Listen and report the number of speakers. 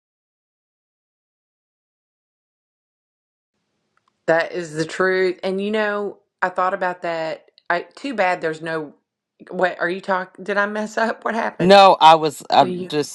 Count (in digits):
2